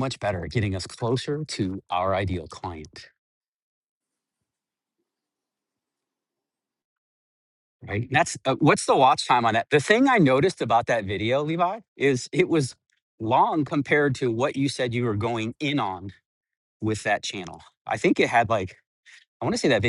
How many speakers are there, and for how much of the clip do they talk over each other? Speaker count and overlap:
one, no overlap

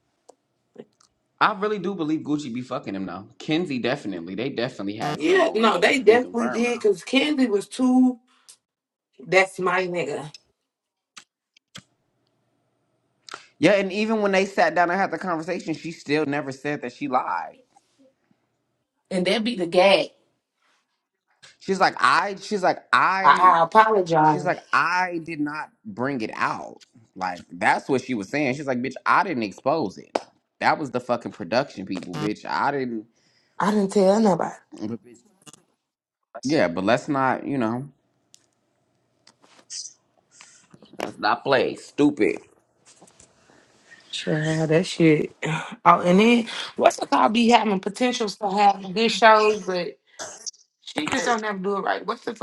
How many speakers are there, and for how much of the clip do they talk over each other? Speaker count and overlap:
two, about 4%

